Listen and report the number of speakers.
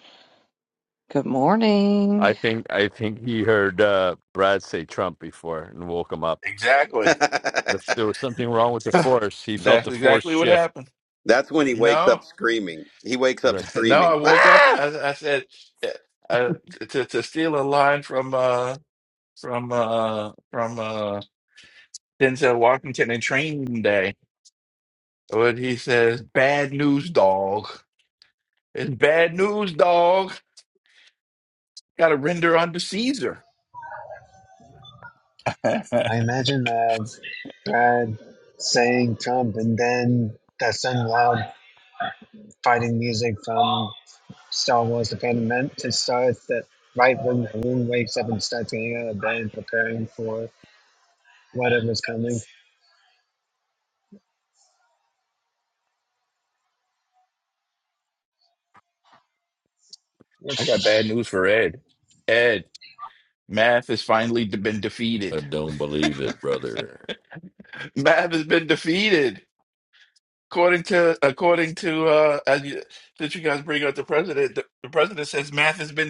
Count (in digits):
6